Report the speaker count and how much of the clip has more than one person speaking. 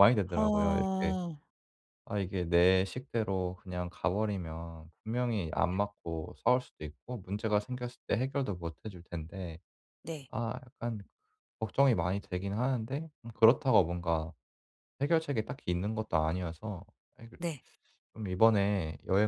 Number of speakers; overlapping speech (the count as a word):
two, about 4%